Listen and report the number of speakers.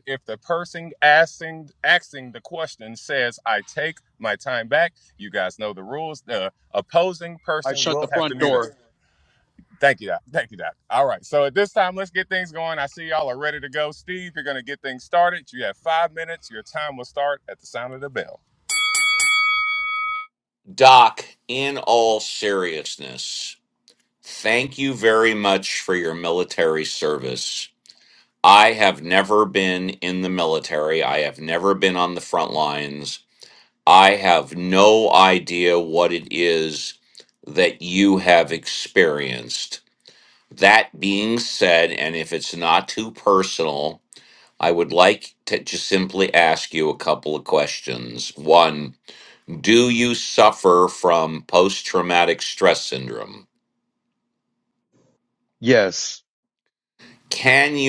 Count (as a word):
three